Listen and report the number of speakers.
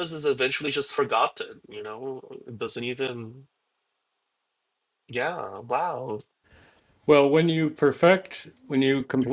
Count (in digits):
2